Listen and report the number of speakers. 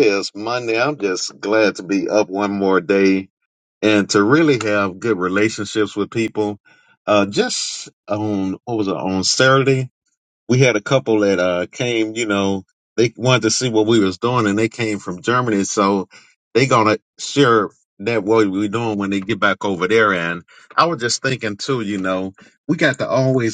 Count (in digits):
1